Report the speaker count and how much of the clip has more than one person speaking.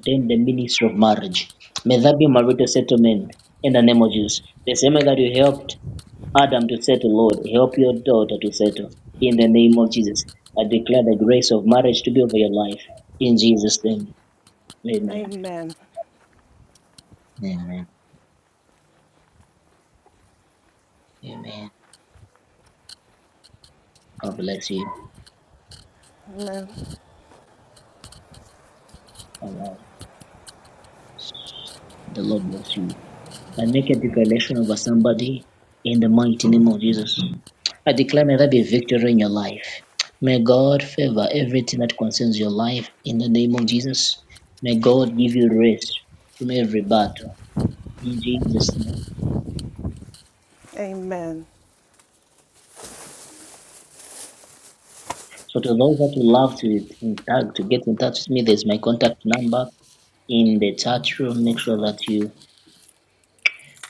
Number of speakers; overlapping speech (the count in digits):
2, under 1%